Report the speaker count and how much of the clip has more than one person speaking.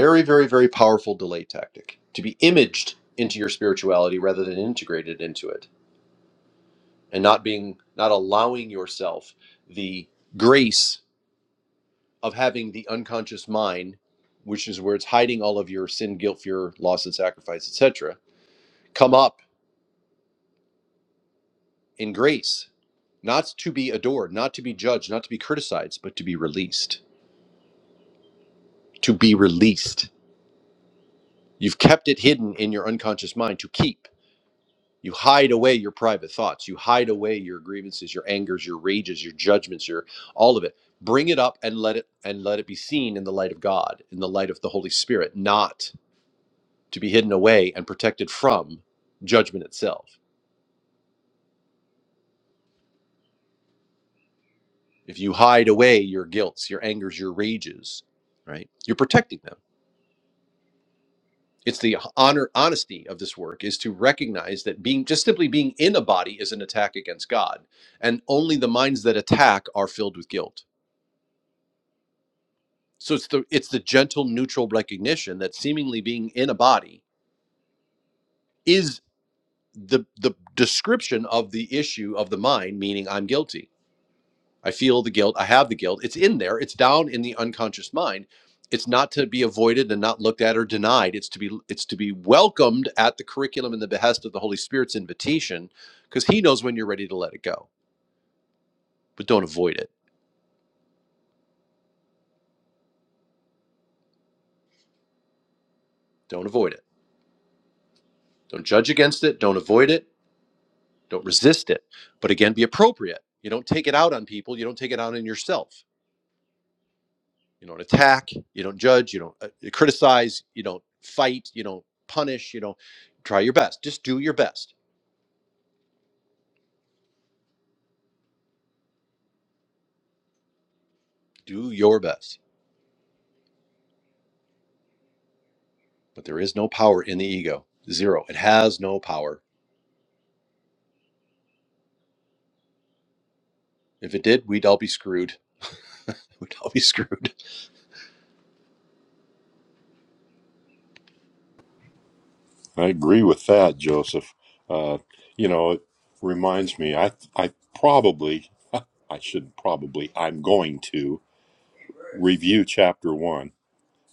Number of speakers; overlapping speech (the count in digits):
2, no overlap